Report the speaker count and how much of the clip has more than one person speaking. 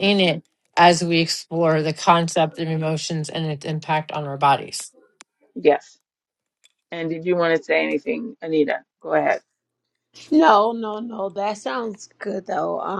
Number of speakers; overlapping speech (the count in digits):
3, no overlap